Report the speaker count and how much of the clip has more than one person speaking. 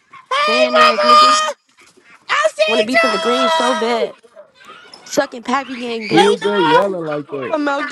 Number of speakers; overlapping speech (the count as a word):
three, about 41%